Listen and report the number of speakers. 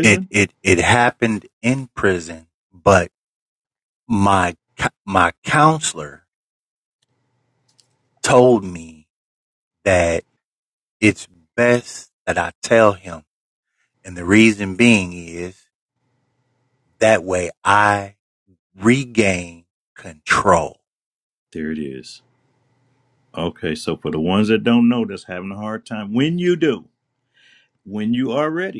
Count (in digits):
2